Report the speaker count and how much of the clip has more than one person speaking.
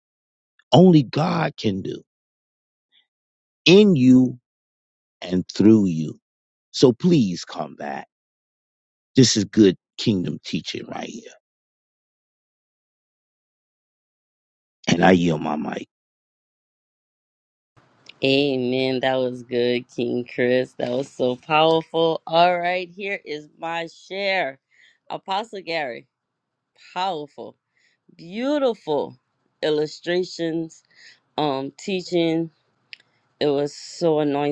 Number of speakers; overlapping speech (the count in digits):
2, no overlap